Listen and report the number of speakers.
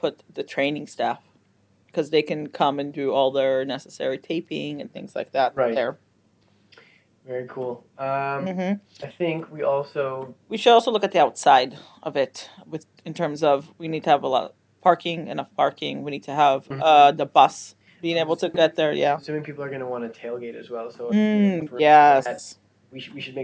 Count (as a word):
two